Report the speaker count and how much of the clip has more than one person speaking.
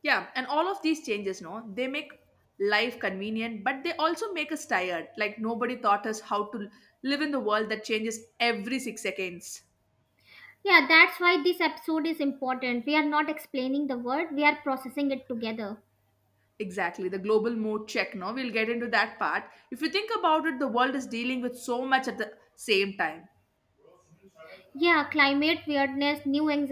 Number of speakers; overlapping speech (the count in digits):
2, no overlap